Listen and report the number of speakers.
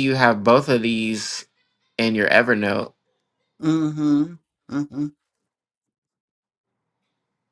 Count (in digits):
2